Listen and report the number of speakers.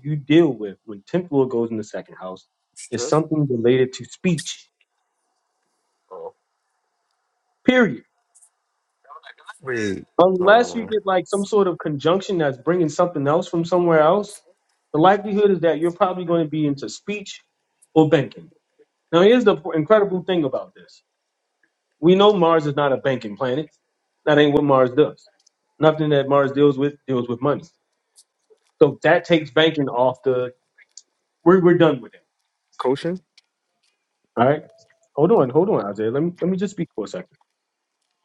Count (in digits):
2